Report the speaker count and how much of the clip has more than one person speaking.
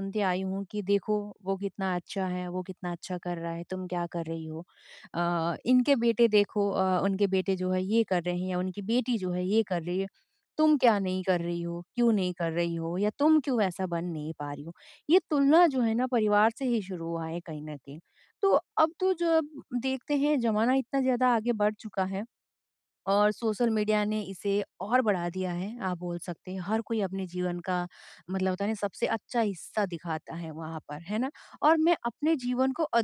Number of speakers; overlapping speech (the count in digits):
1, no overlap